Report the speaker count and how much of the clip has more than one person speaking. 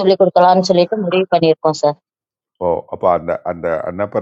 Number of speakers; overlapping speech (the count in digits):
2, no overlap